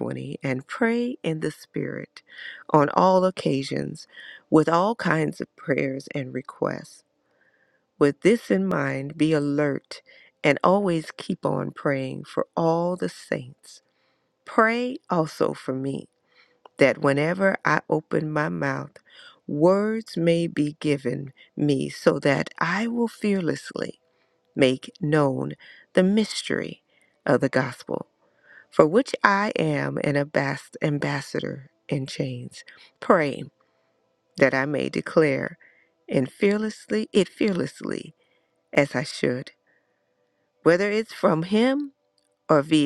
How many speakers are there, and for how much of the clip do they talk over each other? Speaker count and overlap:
1, no overlap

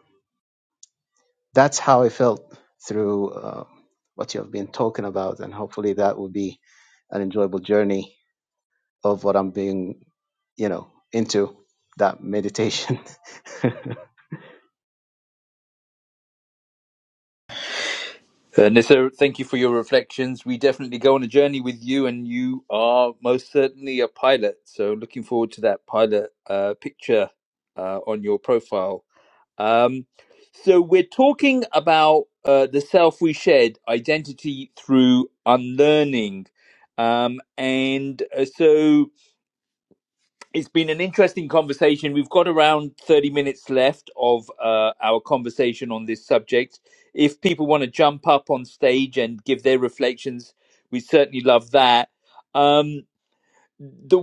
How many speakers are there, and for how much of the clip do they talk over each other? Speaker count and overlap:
2, no overlap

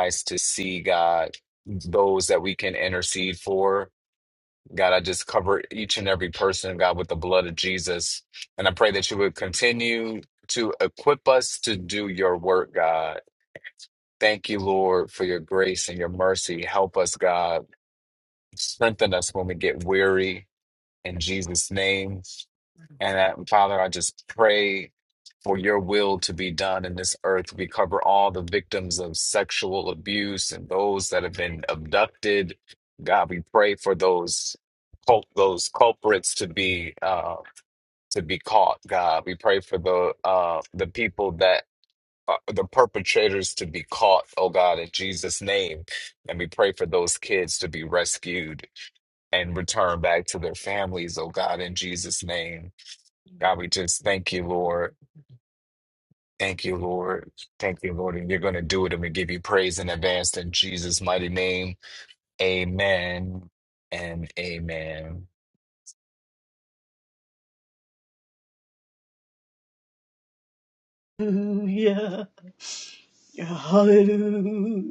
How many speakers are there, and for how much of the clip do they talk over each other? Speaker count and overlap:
2, no overlap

